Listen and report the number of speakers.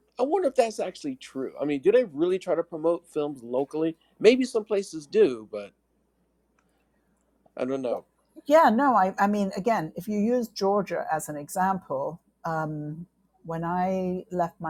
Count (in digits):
2